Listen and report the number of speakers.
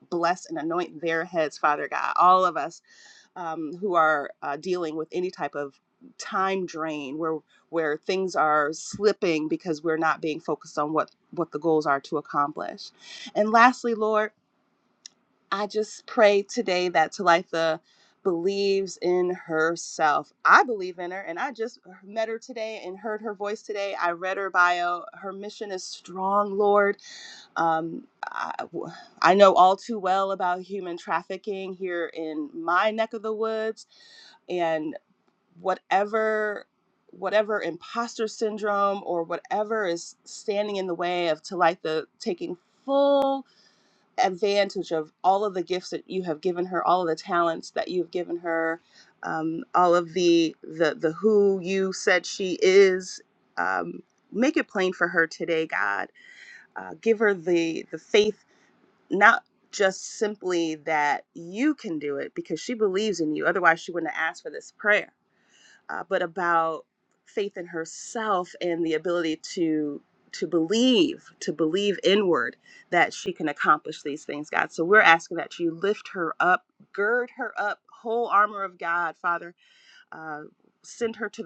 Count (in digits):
1